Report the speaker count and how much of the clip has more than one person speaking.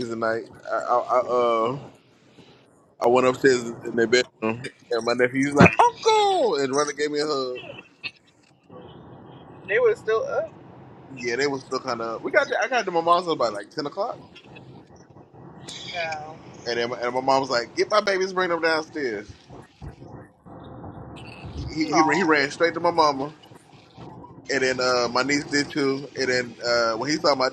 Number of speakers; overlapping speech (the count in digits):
2, about 2%